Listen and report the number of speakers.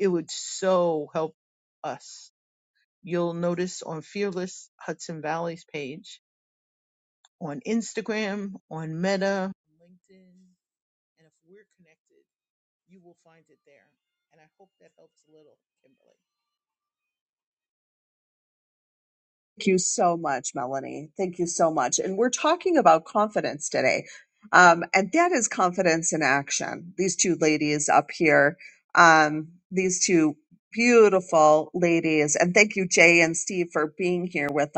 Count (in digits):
2